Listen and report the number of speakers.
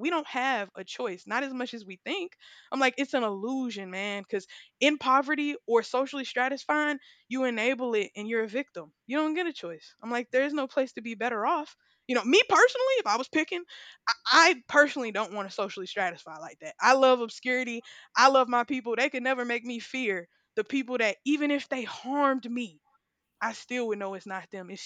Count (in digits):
1